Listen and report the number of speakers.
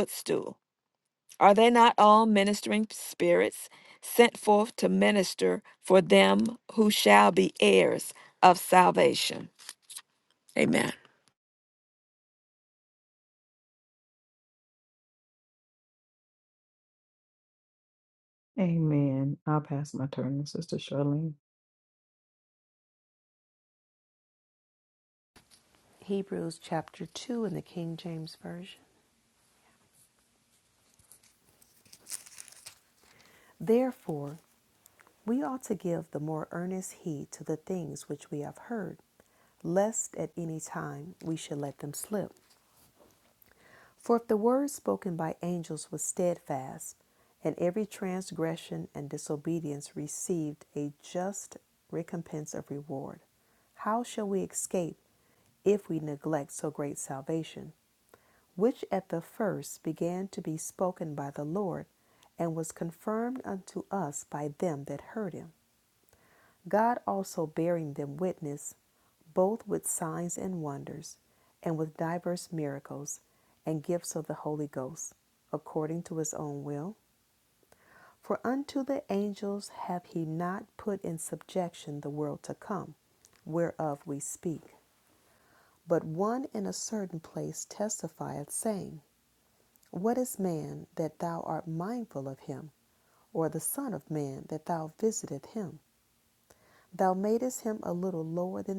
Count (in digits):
3